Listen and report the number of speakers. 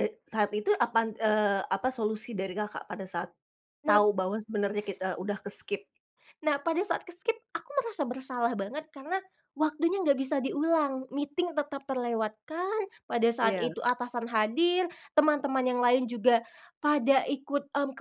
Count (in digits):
2